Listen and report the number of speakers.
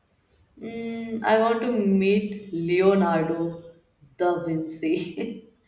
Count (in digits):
1